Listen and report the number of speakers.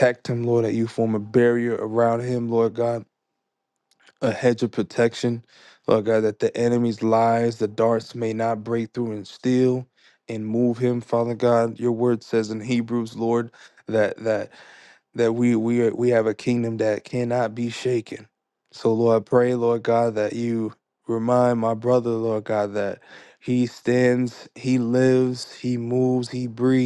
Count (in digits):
1